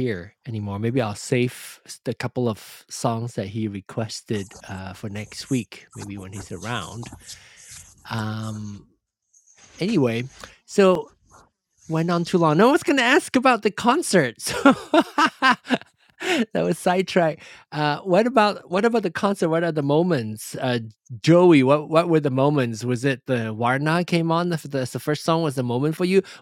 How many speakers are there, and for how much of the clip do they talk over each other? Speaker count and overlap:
1, no overlap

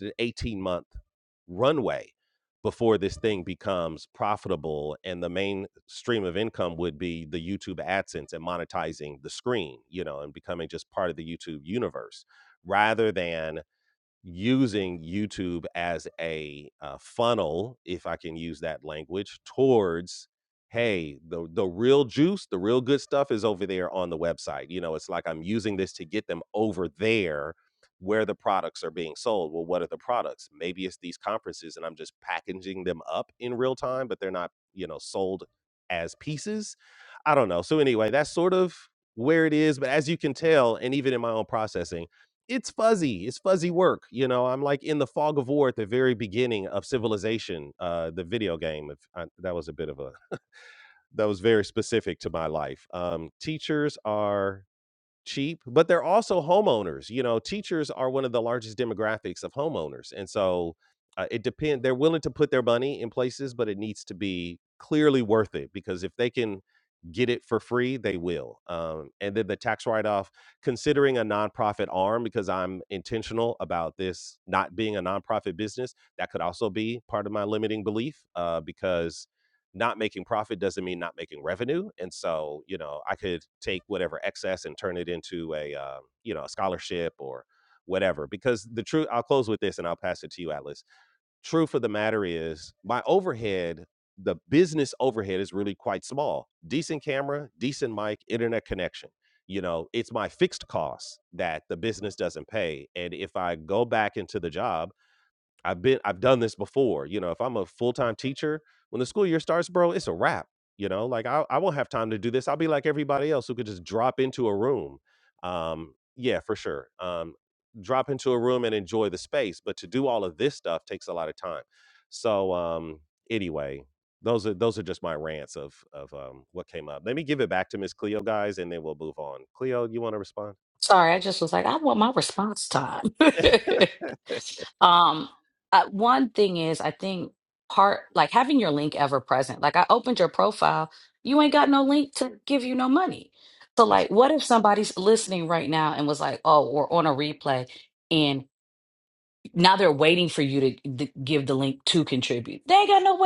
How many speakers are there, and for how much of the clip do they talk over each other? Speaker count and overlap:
2, under 1%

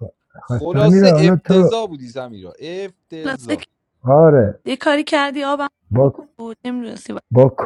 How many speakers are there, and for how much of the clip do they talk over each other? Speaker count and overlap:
3, about 20%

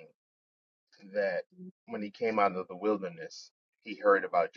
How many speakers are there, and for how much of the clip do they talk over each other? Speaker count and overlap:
1, no overlap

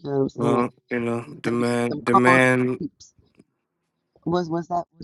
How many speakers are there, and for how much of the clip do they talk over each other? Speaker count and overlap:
2, about 25%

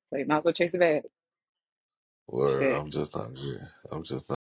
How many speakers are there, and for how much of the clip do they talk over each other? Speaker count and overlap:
2, about 5%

